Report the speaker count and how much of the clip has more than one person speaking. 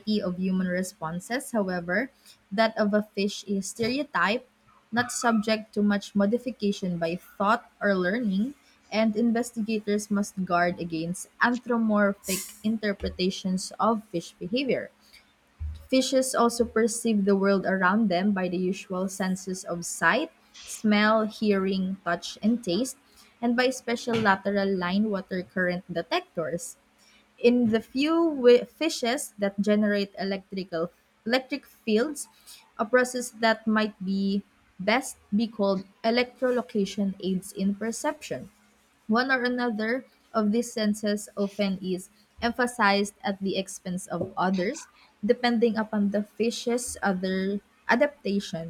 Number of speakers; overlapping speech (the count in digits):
1, no overlap